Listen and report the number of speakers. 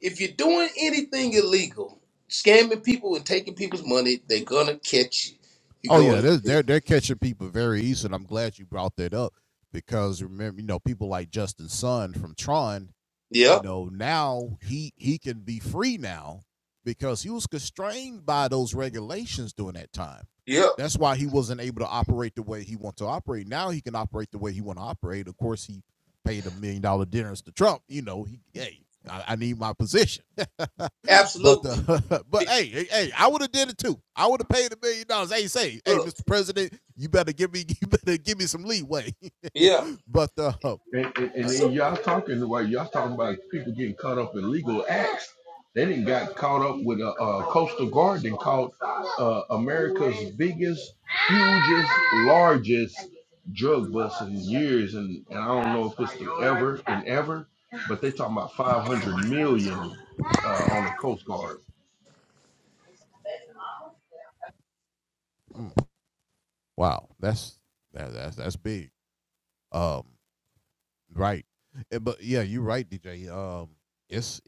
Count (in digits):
3